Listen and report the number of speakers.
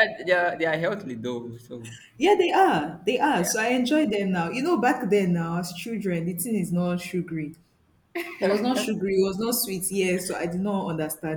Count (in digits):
2